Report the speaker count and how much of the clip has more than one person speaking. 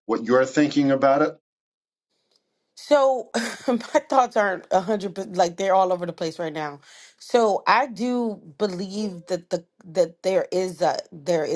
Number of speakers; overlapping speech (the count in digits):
2, no overlap